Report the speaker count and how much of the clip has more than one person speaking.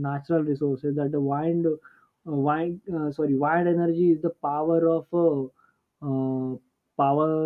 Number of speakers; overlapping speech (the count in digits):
1, no overlap